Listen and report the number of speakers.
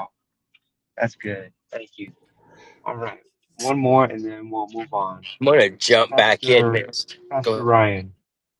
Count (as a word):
two